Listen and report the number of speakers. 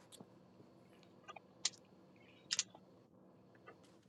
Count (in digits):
0